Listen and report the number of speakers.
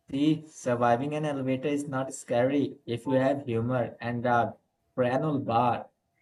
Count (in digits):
1